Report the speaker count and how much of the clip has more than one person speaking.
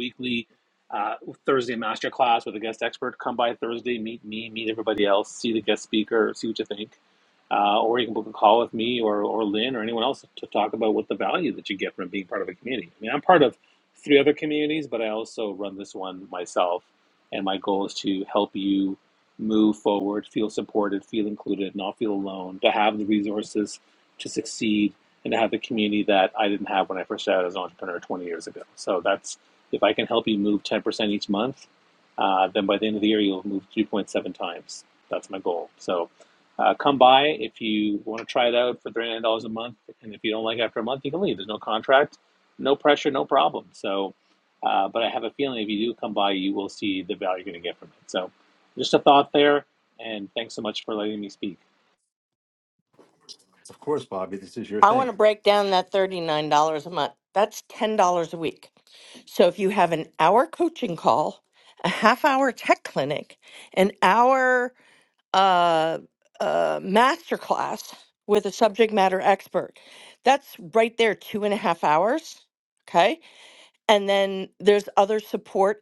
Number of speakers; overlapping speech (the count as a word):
three, under 1%